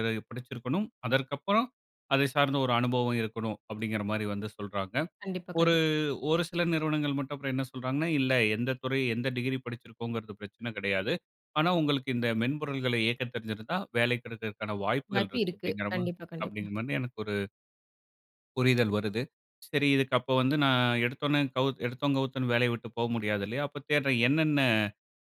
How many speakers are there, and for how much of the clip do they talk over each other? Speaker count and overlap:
2, about 5%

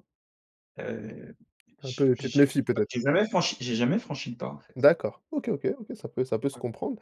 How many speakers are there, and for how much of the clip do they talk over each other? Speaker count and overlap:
2, about 16%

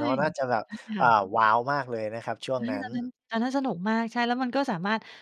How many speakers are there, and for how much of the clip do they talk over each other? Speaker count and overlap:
2, about 9%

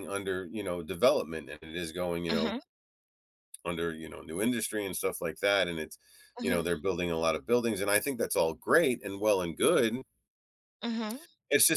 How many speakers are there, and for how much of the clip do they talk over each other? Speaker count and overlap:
2, about 4%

